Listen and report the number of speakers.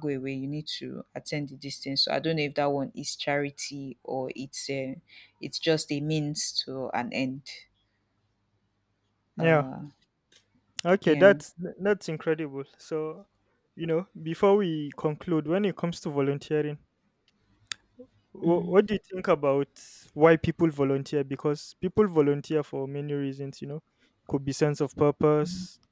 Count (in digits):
2